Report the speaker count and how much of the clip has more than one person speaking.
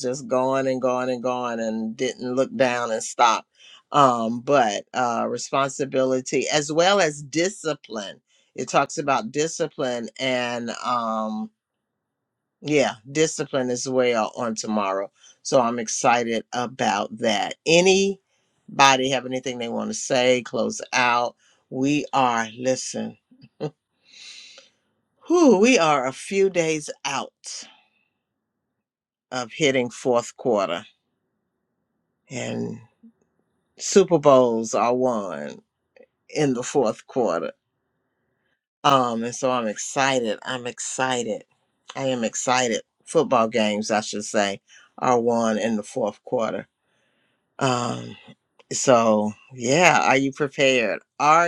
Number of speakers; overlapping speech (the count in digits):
1, no overlap